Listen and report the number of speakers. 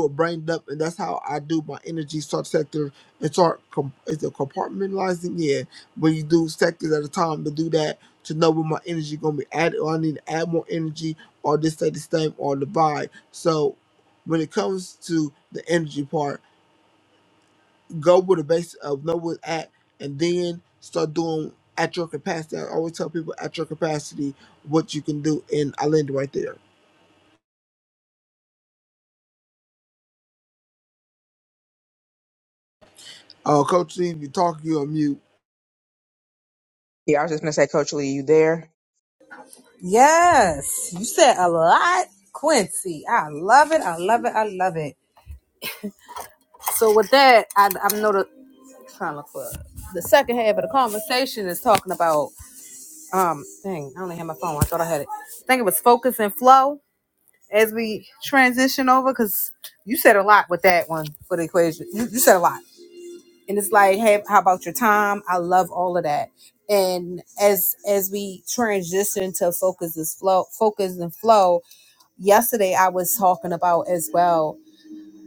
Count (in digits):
3